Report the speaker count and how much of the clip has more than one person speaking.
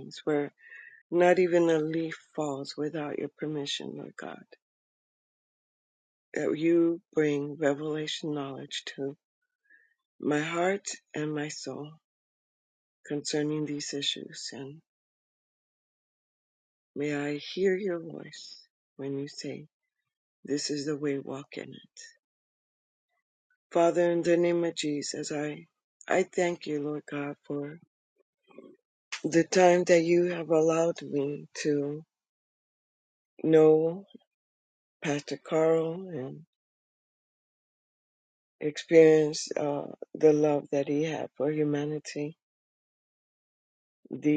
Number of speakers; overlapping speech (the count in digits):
1, no overlap